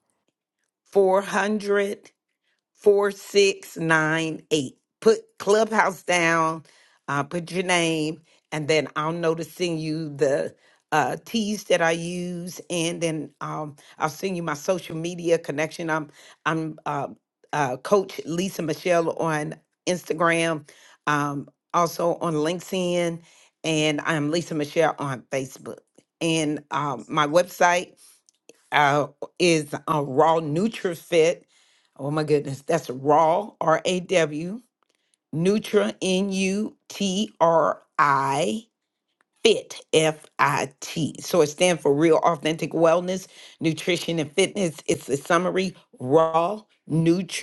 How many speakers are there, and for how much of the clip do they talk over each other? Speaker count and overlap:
1, no overlap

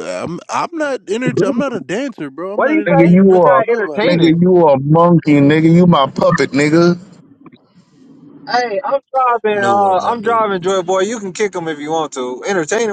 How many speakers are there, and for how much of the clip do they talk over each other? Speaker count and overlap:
3, about 24%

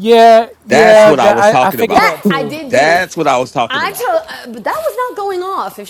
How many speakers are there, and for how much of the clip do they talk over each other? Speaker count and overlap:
3, about 42%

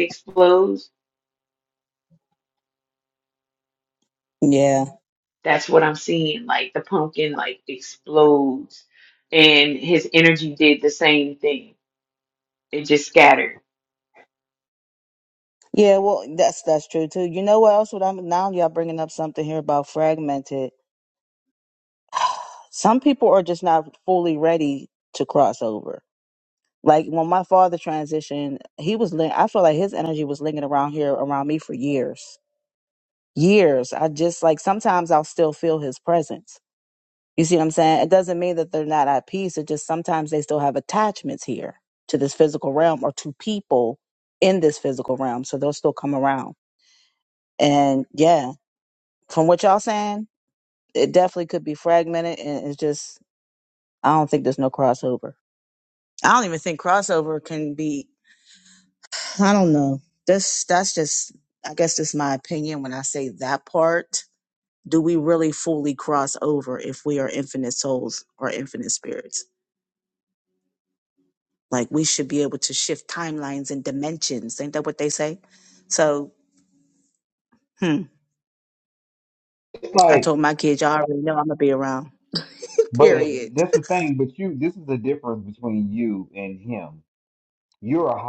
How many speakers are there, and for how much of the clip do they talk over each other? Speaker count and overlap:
3, about 1%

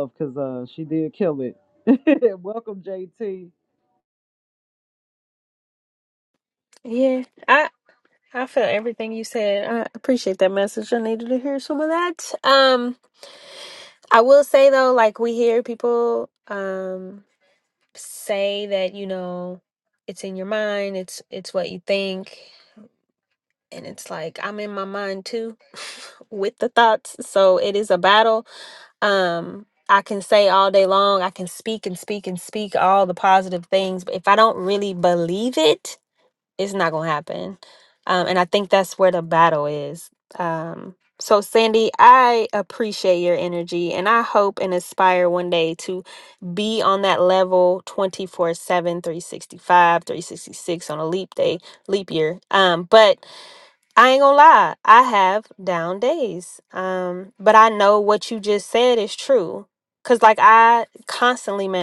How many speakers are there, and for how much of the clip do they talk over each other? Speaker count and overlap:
2, no overlap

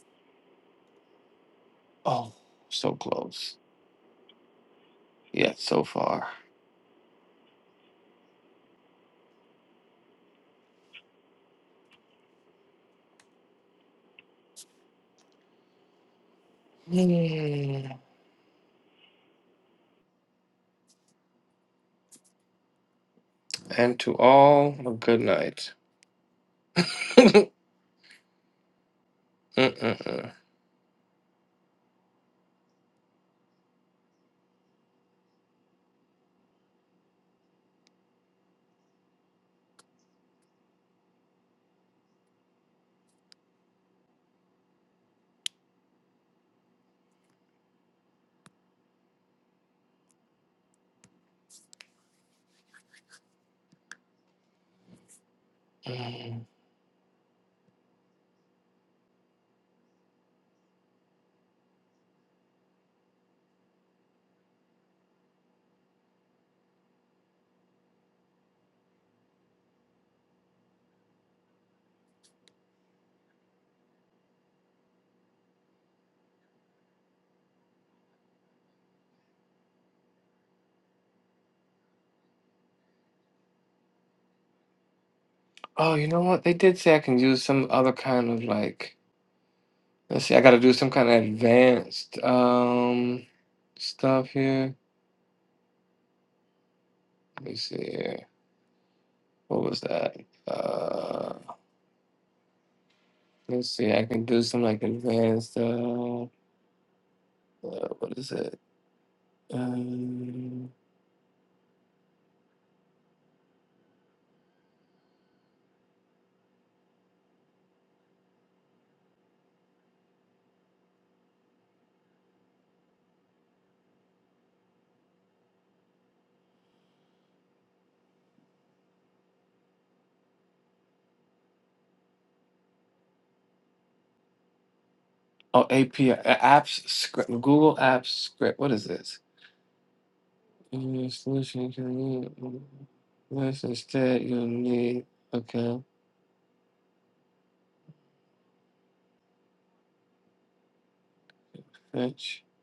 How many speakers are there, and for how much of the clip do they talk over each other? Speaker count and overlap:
1, no overlap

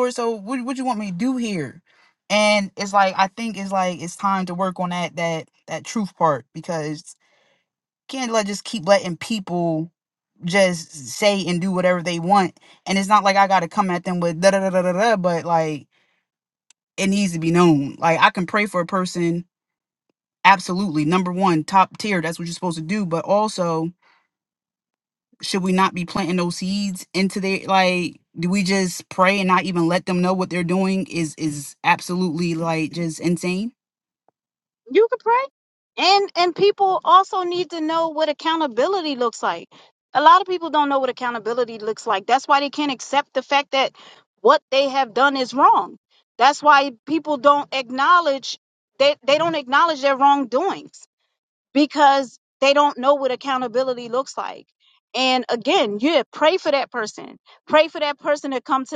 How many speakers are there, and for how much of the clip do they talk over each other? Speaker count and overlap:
2, no overlap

